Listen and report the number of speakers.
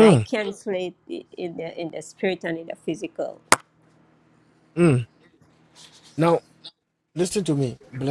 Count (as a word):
two